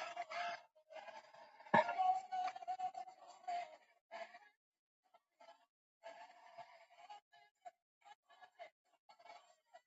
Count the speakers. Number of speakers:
zero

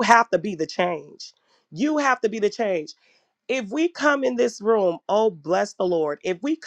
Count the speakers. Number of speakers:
one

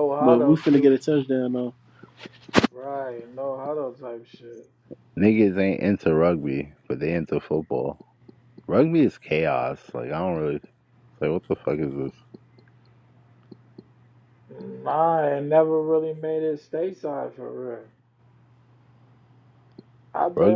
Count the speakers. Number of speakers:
three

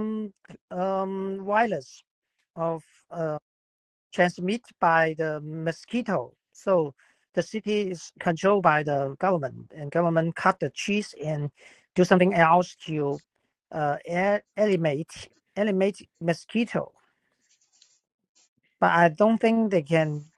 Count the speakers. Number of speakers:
one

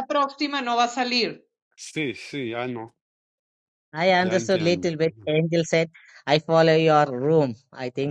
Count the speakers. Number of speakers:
three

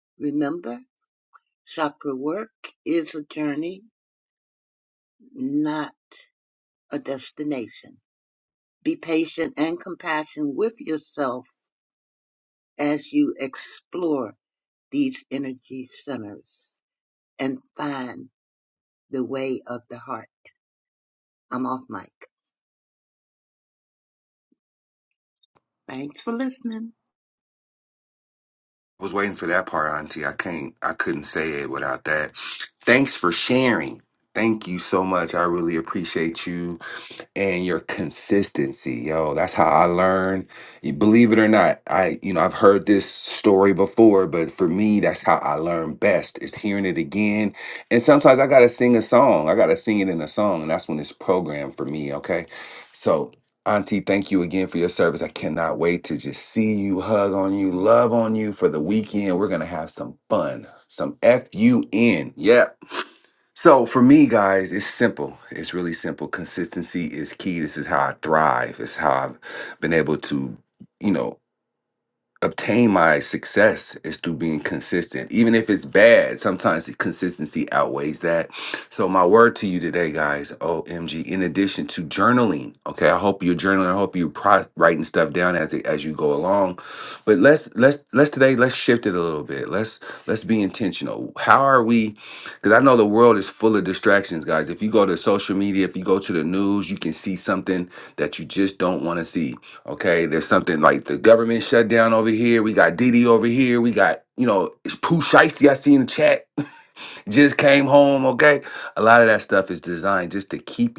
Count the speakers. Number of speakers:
two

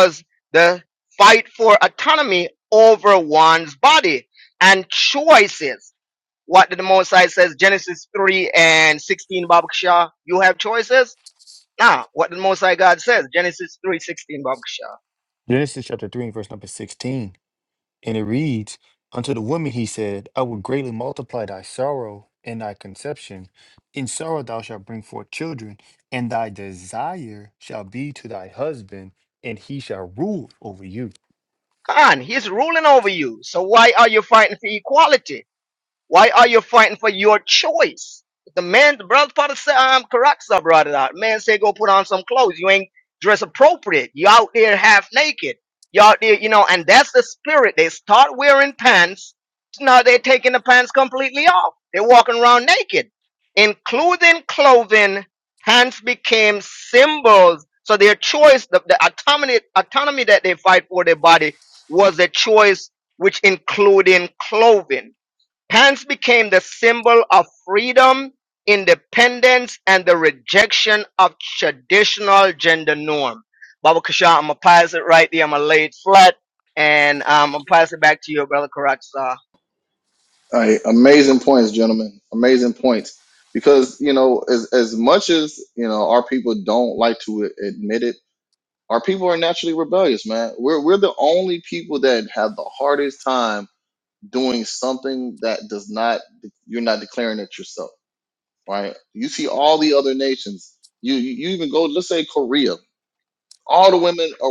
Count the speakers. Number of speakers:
three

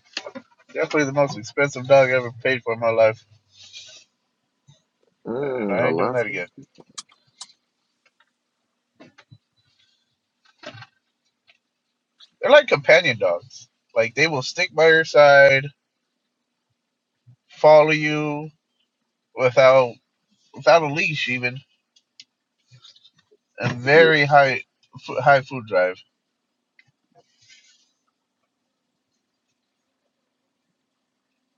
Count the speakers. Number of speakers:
two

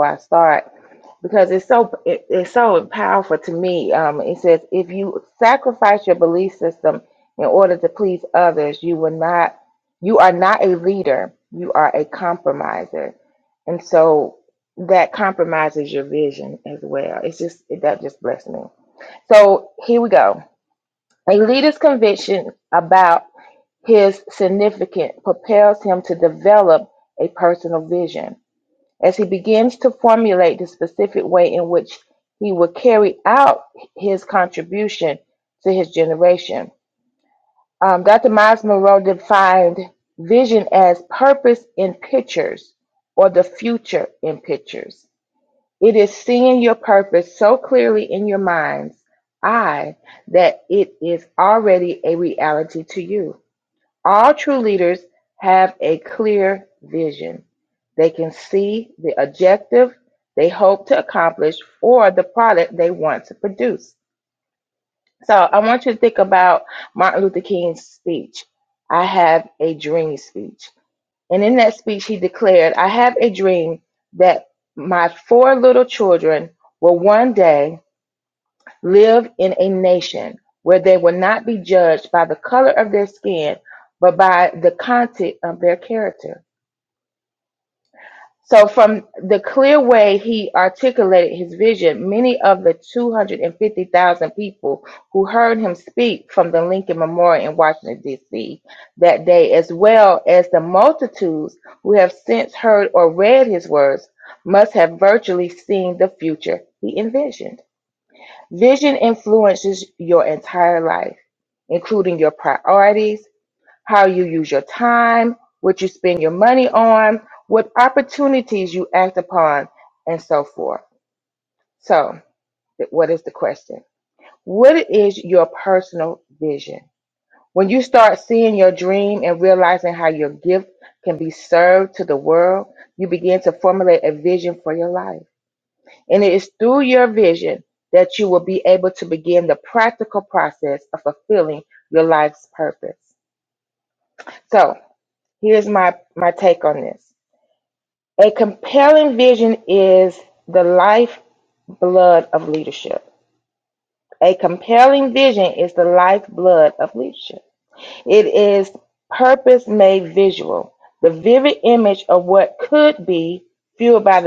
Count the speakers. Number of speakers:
one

